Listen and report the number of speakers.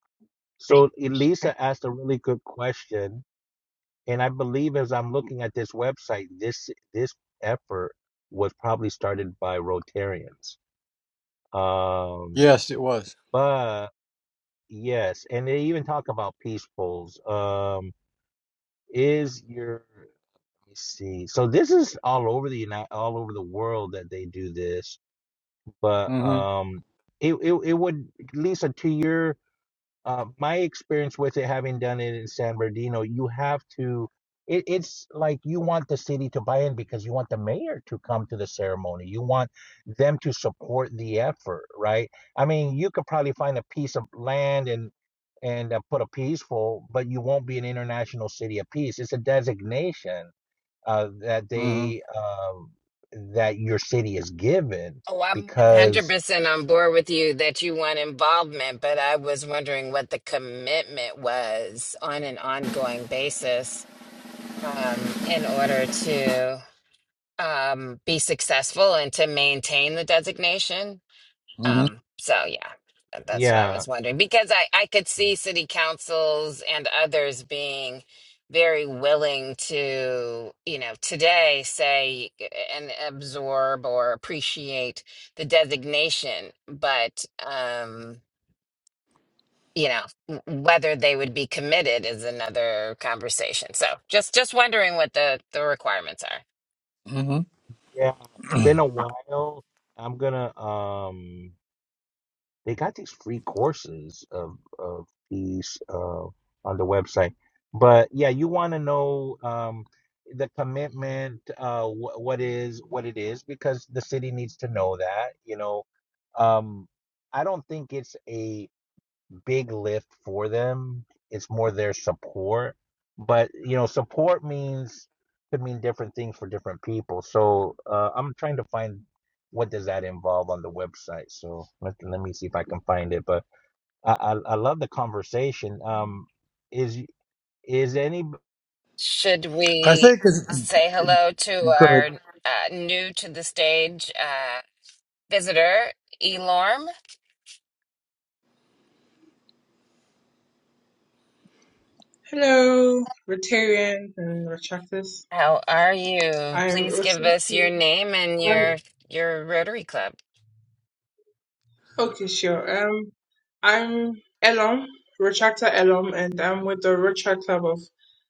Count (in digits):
4